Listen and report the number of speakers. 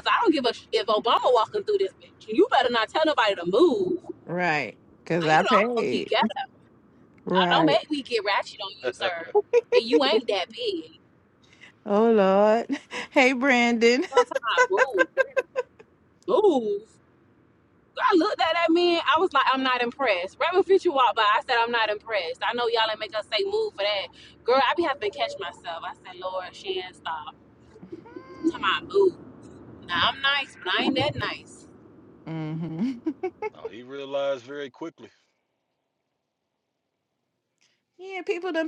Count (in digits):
3